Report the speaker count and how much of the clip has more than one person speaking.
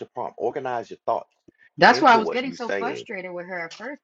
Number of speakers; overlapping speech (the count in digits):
2, about 29%